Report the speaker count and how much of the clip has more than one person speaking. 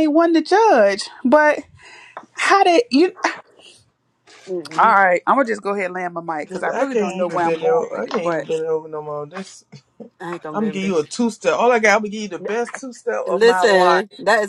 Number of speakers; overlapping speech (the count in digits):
3, about 23%